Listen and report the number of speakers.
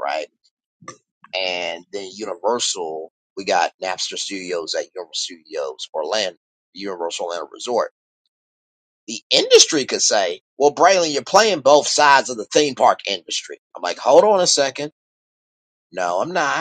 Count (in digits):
1